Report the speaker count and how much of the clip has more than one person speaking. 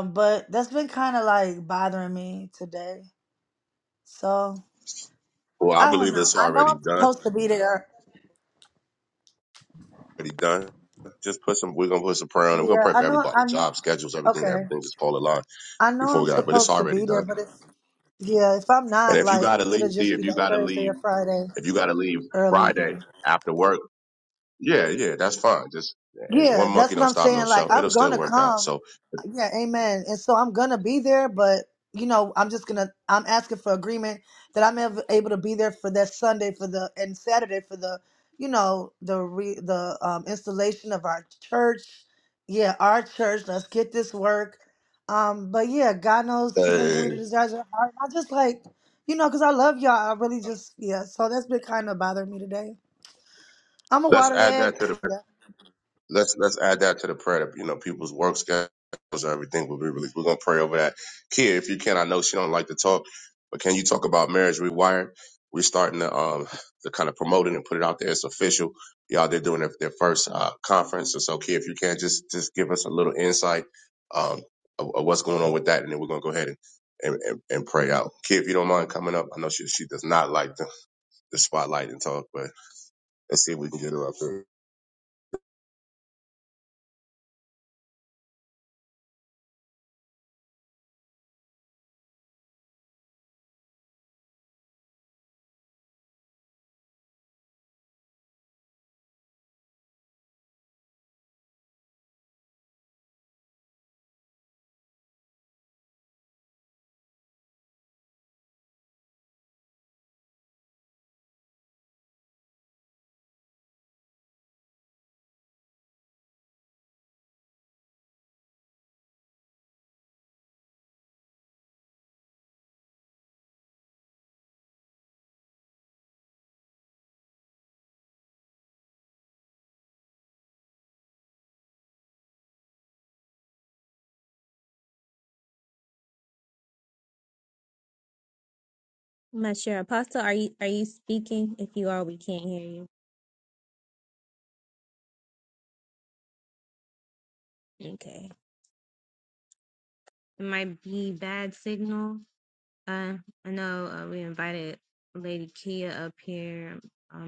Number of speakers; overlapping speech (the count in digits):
3, about 6%